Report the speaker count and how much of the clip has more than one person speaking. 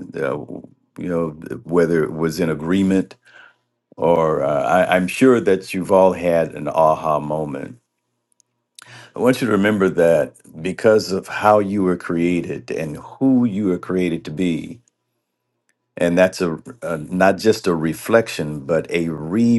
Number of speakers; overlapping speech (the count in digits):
1, no overlap